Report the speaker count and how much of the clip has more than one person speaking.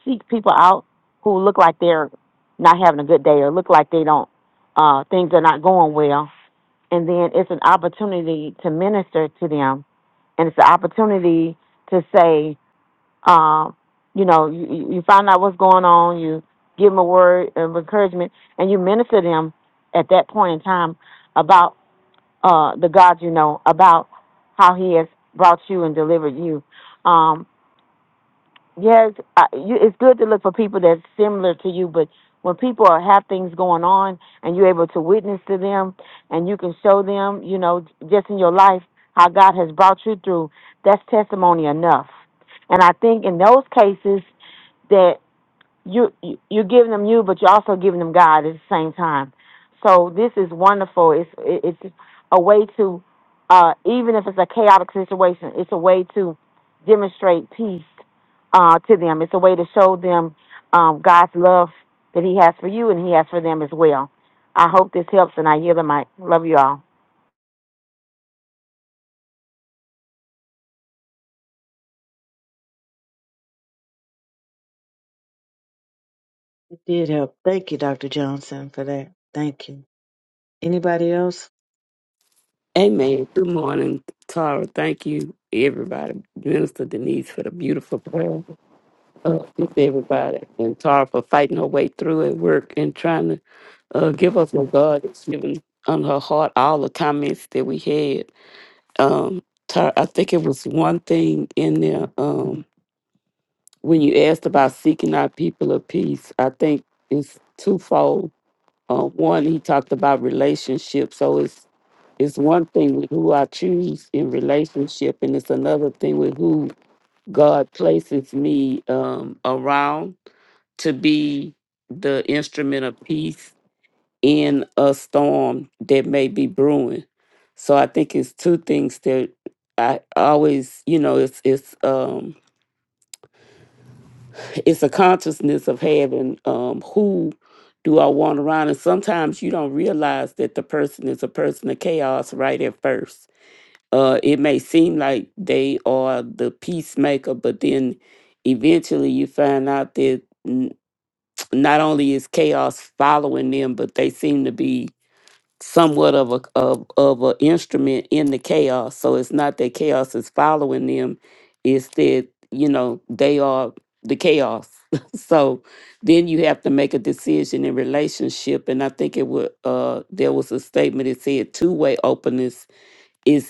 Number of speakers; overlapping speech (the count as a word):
three, no overlap